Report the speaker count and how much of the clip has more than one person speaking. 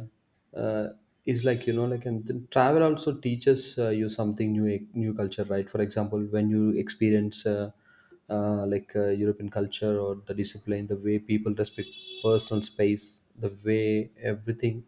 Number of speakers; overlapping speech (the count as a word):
one, no overlap